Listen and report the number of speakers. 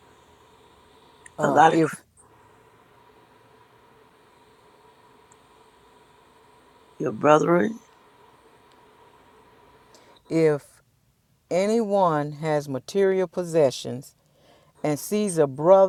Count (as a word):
two